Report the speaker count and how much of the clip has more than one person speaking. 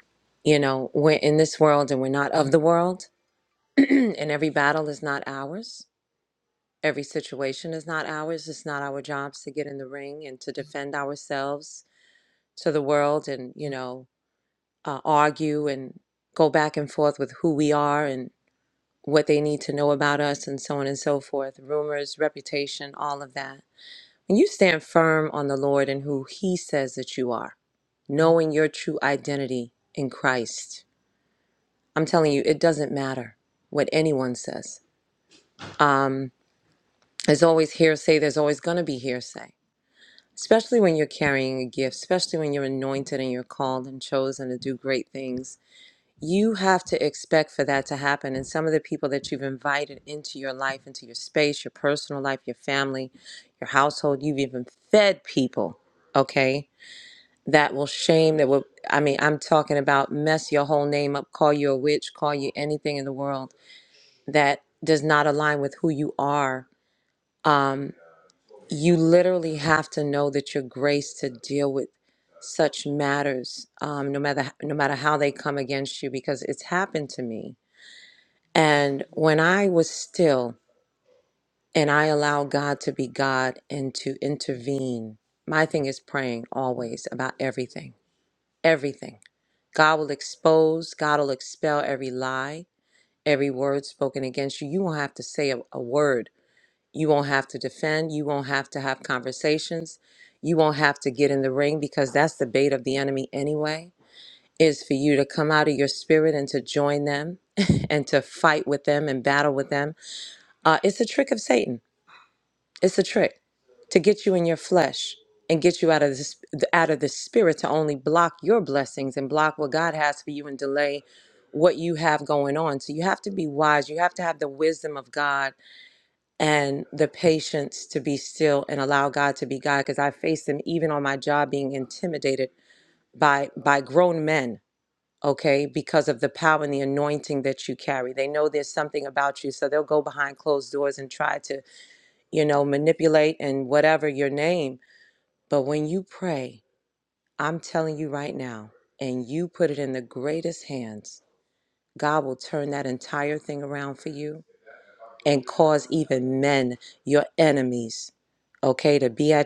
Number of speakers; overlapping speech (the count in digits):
1, no overlap